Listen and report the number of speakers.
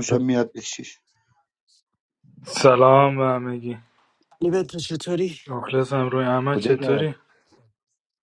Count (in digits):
3